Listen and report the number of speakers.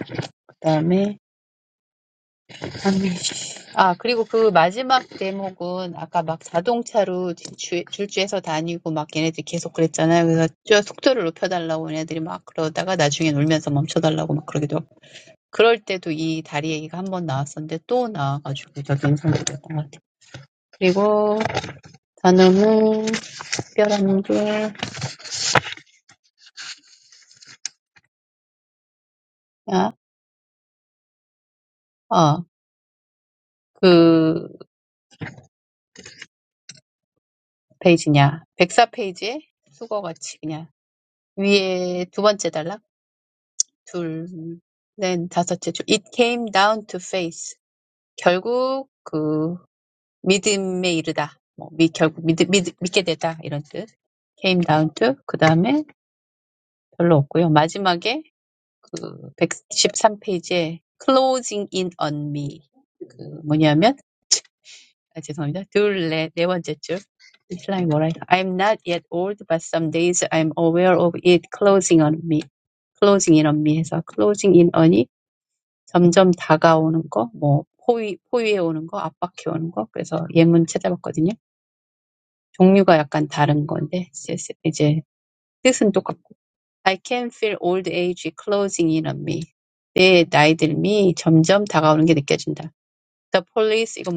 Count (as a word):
one